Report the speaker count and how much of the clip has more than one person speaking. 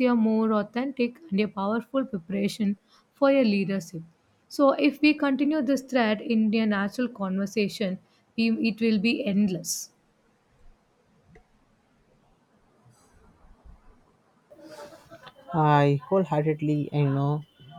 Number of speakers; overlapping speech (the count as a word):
two, no overlap